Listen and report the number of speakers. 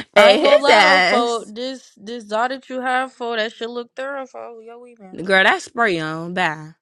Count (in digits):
2